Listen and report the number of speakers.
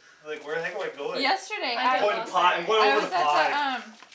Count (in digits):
2